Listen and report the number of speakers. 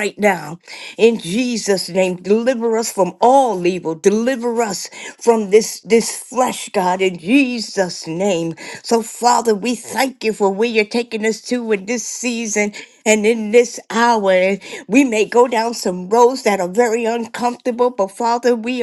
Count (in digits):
1